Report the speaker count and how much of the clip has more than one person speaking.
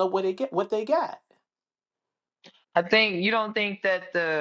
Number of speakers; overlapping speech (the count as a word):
two, no overlap